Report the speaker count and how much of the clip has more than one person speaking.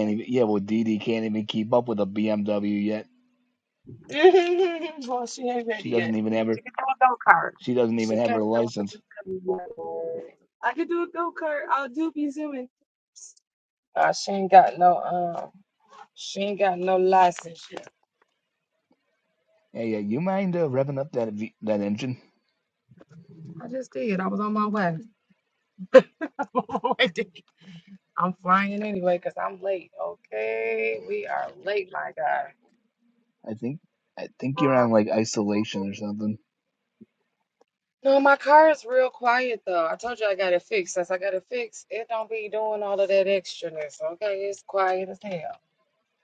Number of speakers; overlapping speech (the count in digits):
2, about 3%